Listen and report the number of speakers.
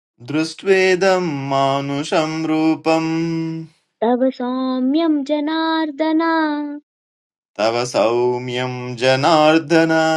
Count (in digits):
2